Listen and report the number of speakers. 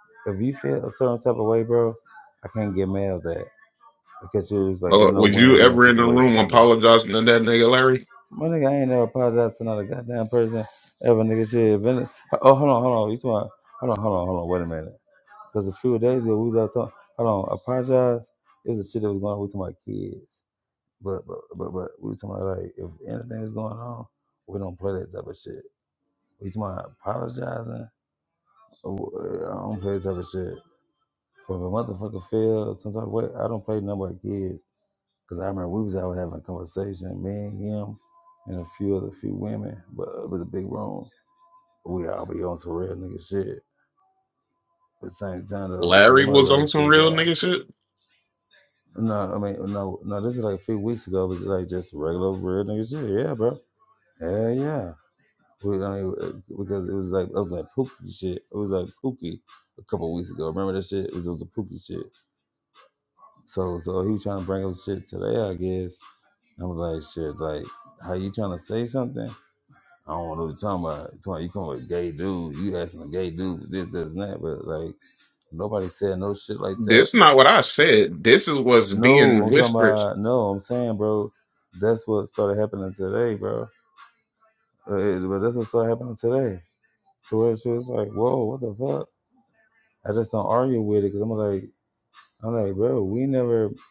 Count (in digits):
2